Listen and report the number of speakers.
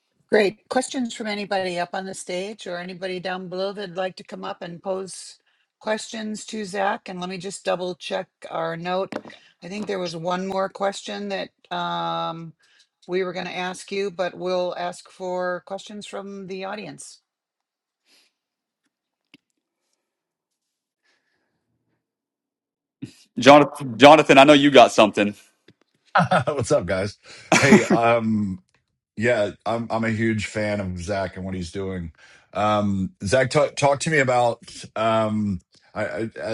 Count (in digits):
3